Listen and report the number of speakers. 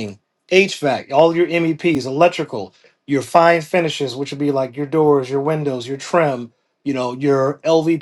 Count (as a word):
one